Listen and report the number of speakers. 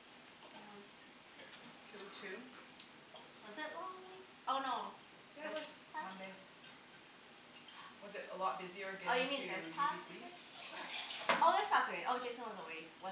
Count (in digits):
2